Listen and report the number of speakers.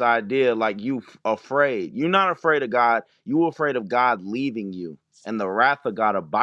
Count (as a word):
one